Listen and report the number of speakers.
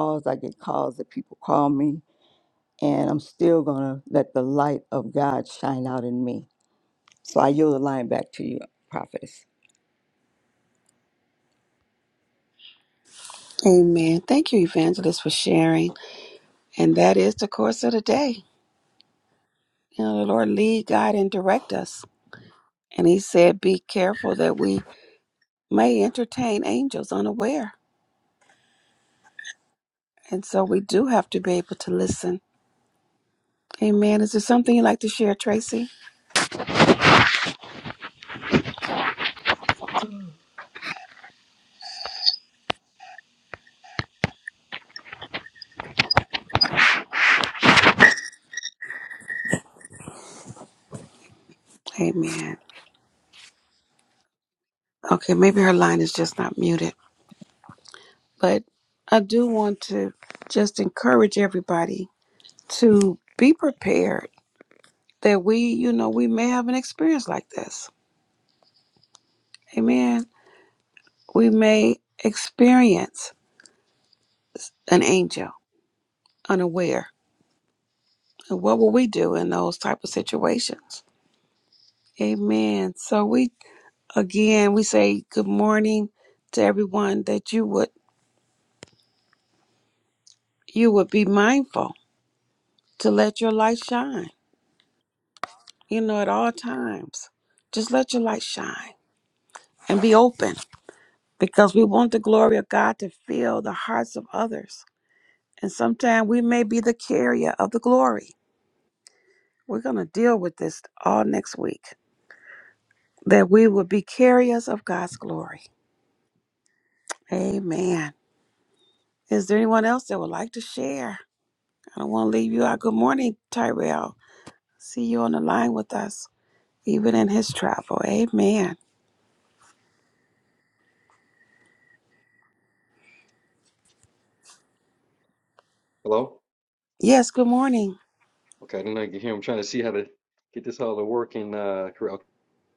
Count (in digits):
3